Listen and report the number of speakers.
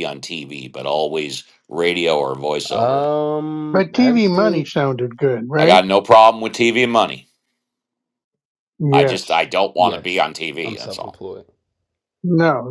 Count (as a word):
three